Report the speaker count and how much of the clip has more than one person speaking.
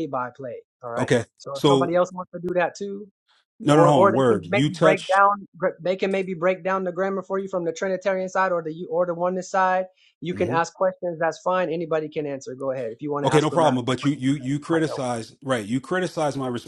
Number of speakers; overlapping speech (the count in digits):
2, about 23%